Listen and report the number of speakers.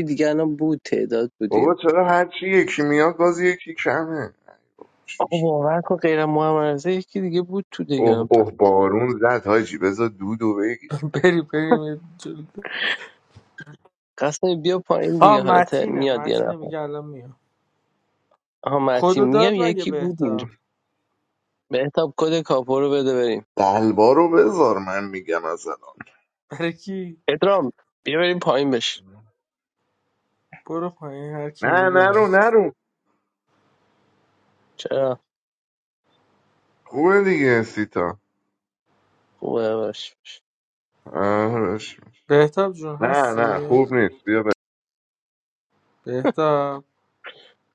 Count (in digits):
3